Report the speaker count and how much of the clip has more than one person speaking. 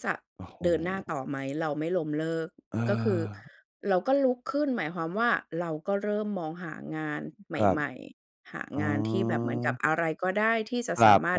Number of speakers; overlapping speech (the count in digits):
2, about 17%